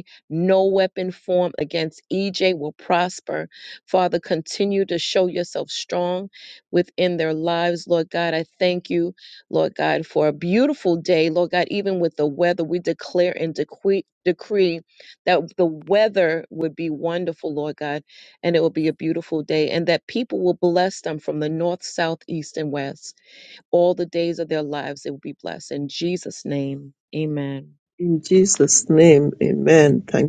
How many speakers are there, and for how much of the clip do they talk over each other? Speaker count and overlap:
2, no overlap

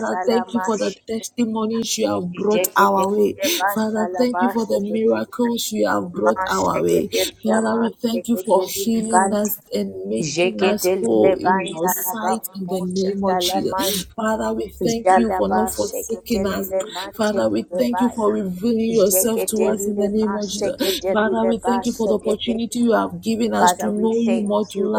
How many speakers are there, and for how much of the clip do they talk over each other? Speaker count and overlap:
2, about 67%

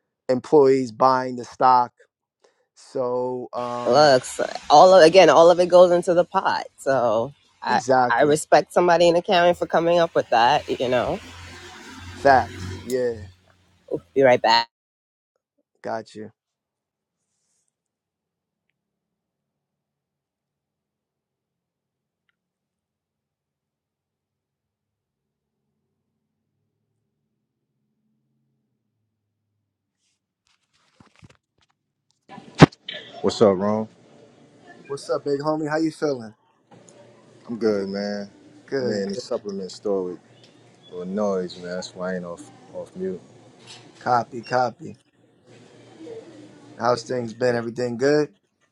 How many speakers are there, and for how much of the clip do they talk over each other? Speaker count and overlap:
3, about 3%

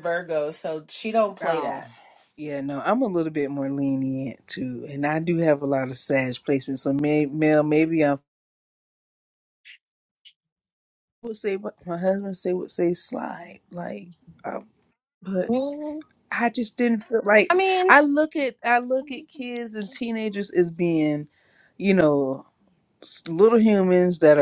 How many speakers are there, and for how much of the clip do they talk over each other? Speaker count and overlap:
3, about 2%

